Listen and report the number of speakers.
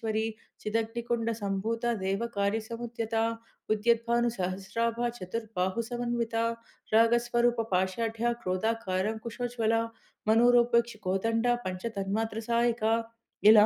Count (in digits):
1